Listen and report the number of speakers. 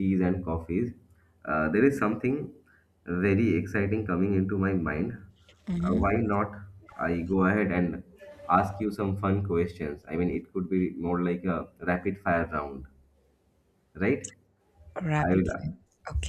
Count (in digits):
2